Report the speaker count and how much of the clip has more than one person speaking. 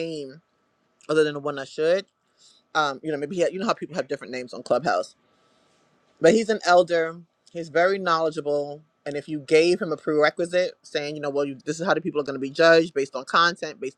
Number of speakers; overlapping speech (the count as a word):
one, no overlap